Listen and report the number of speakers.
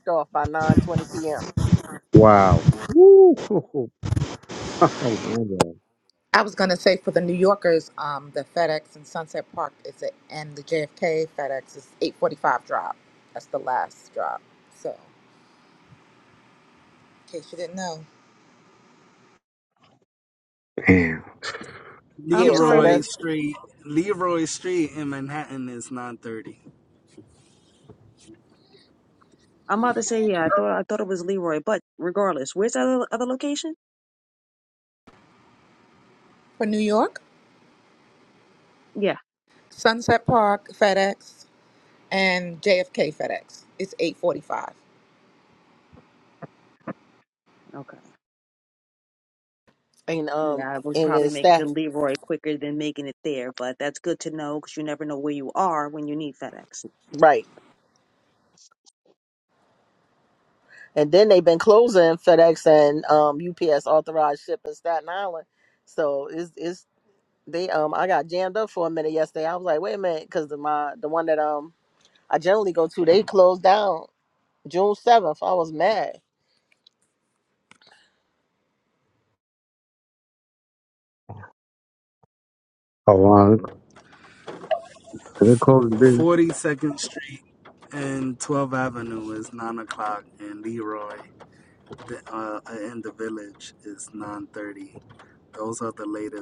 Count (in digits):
5